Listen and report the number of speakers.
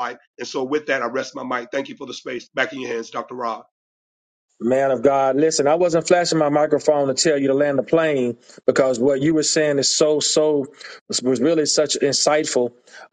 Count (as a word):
two